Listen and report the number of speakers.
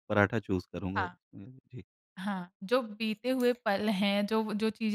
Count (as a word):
two